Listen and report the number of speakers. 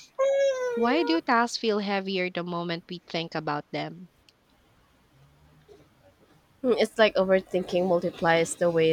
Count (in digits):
2